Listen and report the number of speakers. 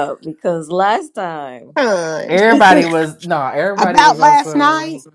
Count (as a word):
three